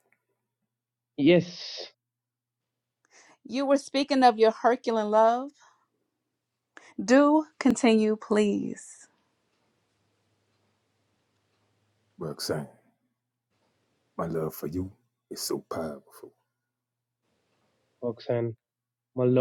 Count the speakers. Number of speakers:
3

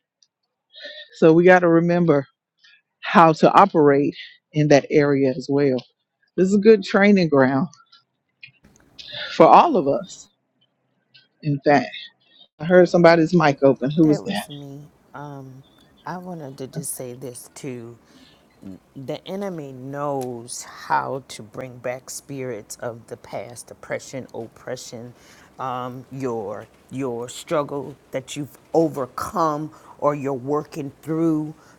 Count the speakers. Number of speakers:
2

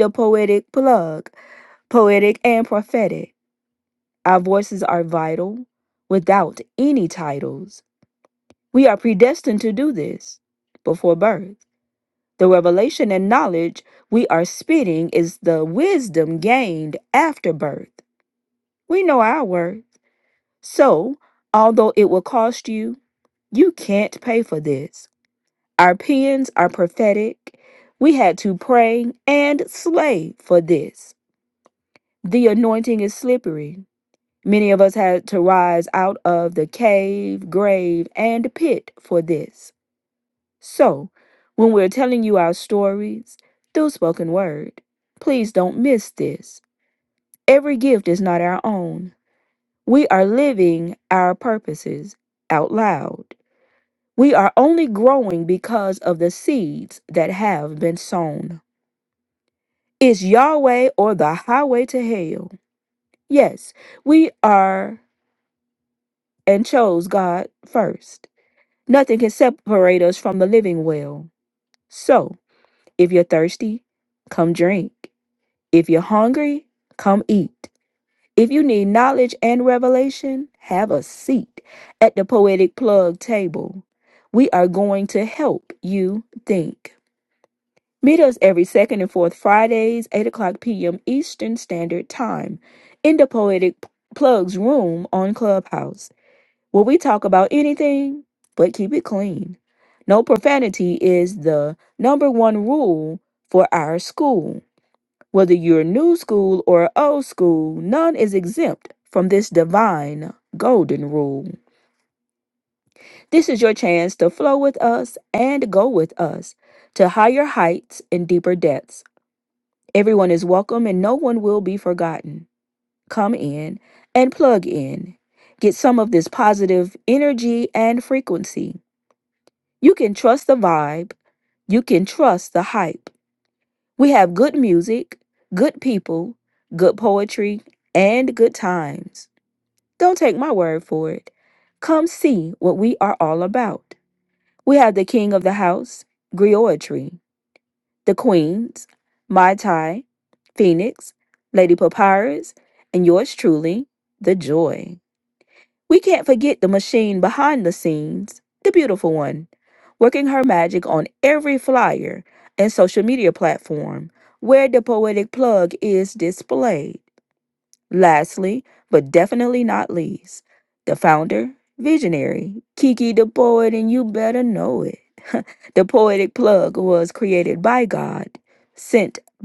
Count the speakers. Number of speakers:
1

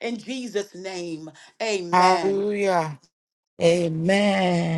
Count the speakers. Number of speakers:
3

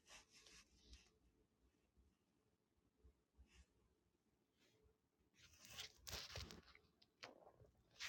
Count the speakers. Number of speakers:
0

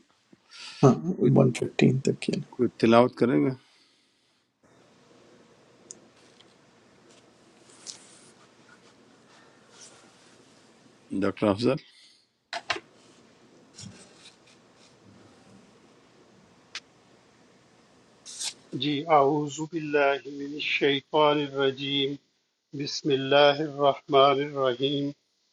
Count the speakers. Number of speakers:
3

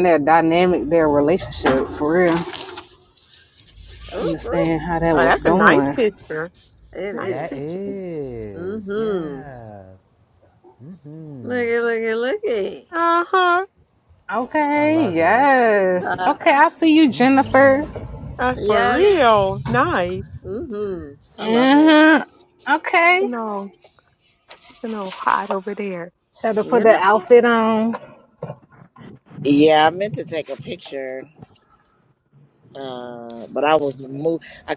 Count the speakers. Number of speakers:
5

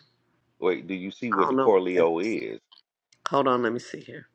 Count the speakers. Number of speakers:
2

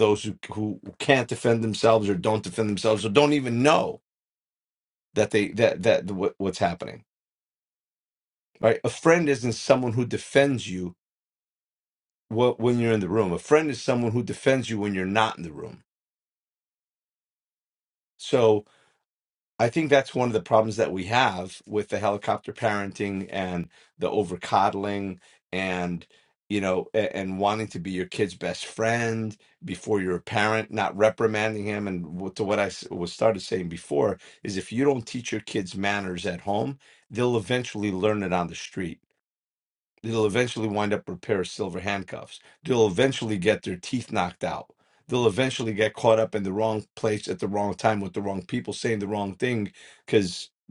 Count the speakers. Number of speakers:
1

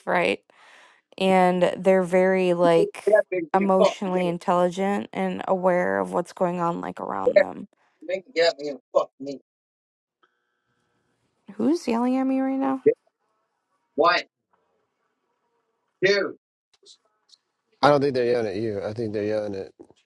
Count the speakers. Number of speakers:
3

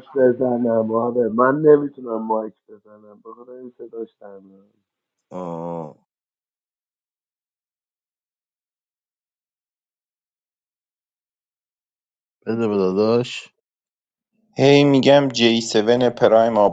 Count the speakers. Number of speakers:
3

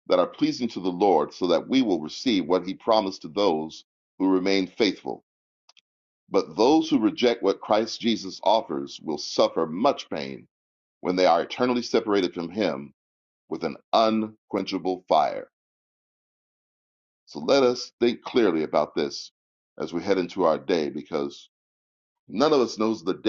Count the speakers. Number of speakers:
1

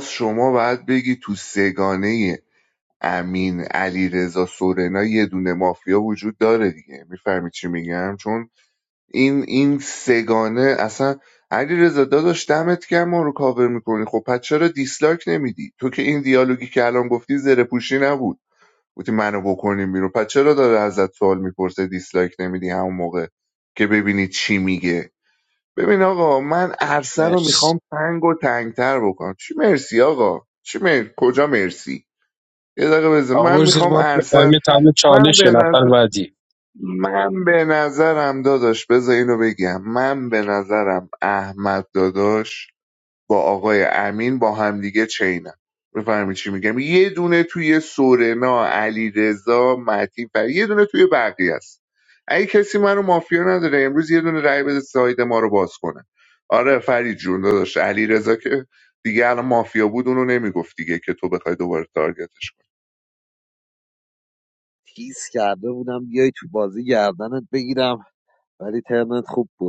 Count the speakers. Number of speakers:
3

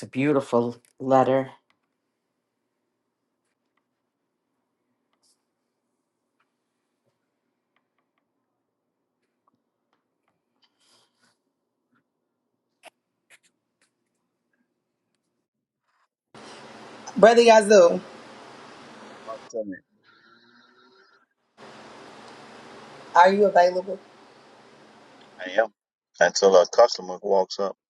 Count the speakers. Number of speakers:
3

